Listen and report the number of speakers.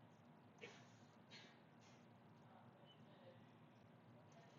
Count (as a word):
zero